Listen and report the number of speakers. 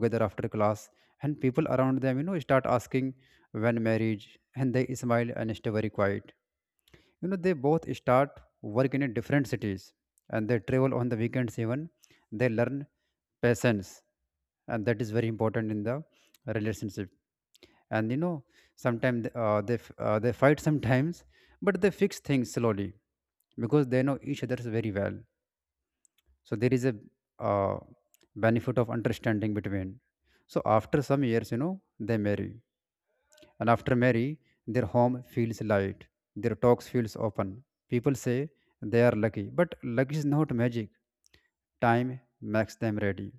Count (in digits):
1